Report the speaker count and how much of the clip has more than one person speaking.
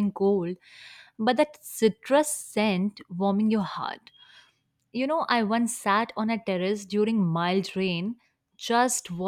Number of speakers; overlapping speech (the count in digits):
1, no overlap